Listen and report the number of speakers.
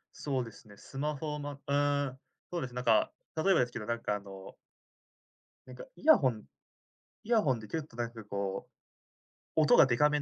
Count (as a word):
one